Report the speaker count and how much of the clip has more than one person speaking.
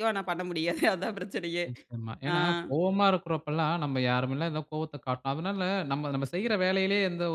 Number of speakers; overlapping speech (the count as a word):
two, about 2%